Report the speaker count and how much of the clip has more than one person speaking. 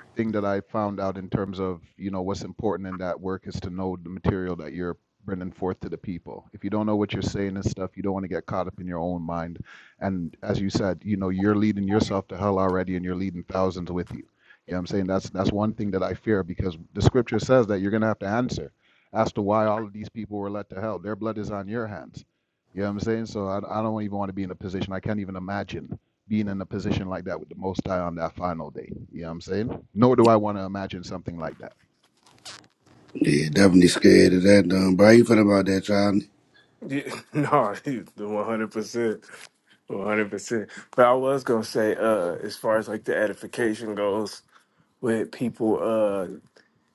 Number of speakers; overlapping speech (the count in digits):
3, no overlap